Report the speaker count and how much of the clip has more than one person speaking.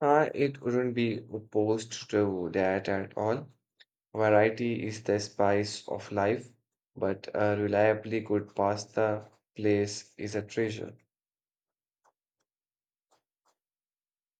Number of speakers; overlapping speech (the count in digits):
1, no overlap